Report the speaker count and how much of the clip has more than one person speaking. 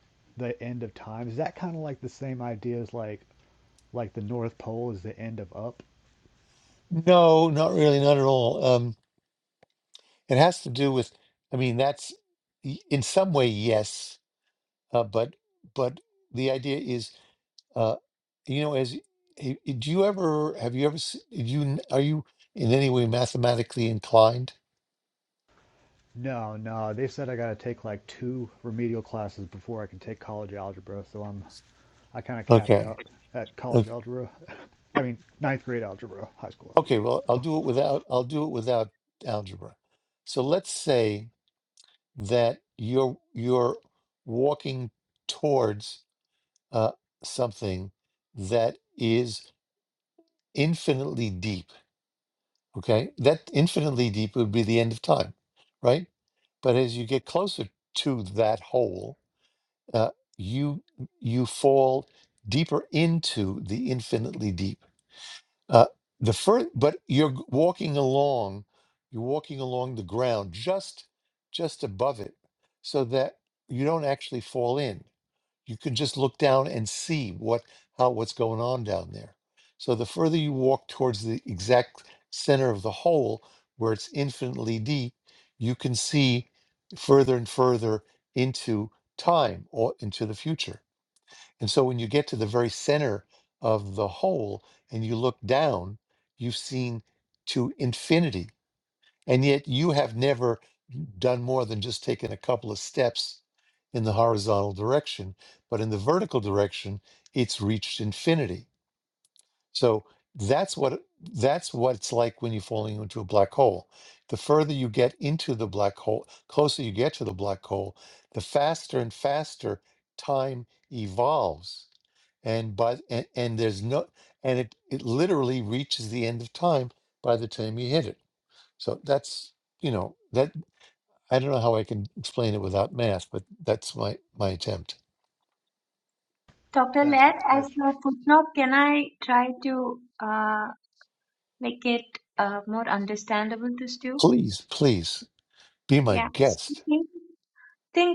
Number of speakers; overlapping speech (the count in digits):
3, about 1%